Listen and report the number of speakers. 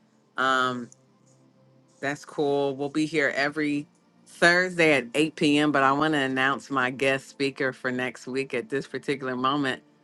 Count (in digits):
1